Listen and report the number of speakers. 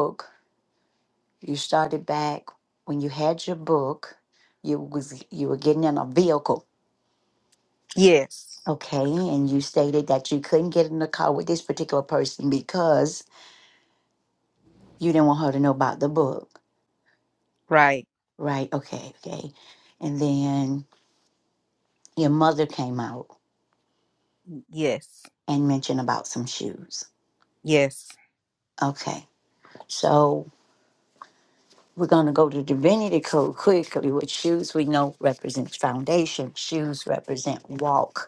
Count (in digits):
2